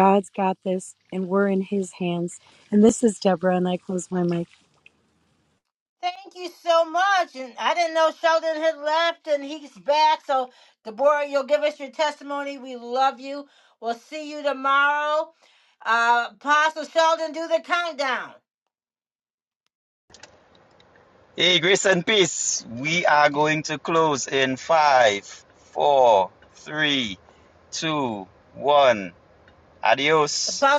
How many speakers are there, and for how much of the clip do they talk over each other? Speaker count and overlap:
3, no overlap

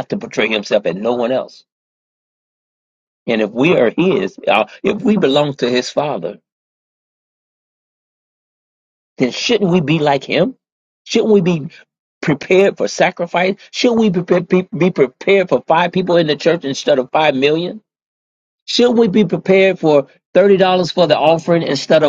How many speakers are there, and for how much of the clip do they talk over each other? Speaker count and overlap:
1, no overlap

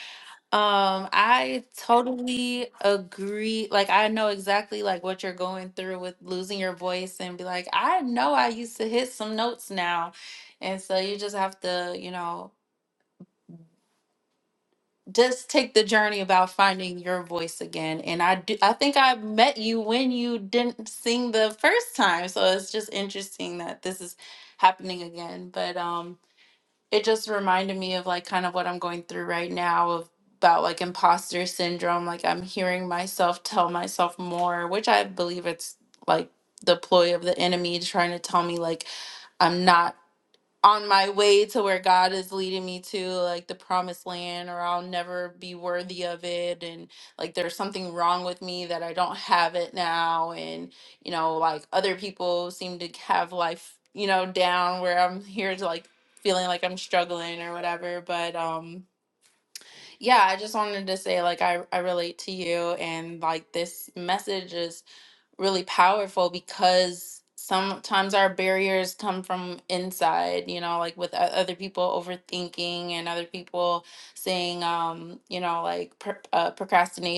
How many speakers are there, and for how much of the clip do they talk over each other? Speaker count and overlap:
1, no overlap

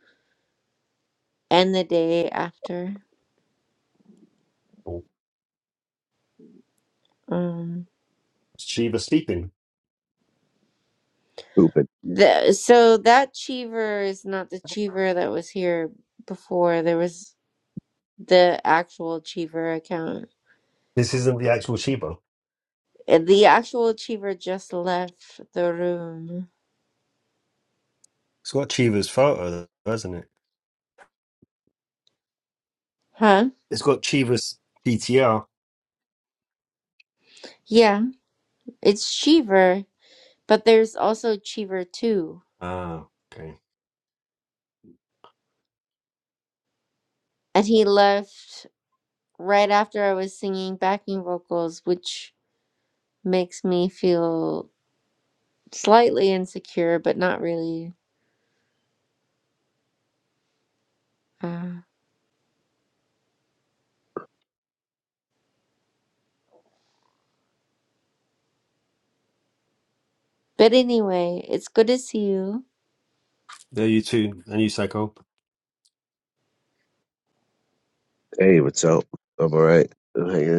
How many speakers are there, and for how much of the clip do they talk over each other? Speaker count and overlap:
3, no overlap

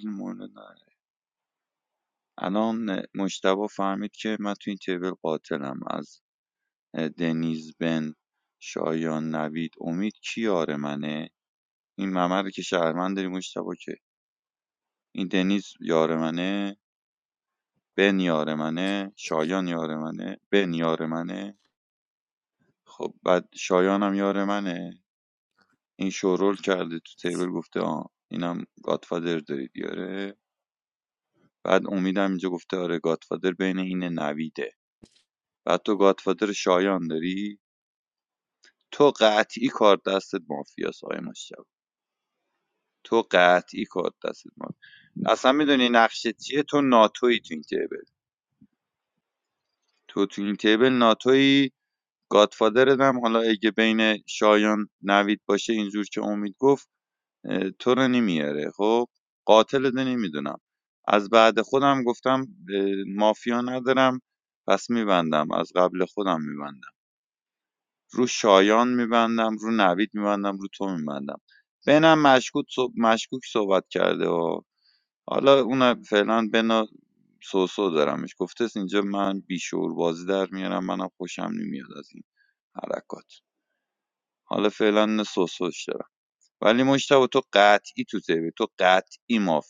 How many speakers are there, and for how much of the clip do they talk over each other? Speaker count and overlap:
1, no overlap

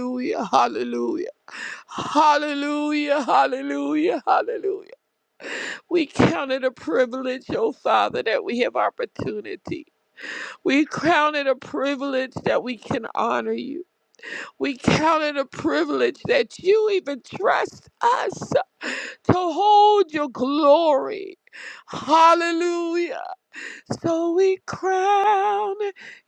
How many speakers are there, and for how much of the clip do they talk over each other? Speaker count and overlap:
1, no overlap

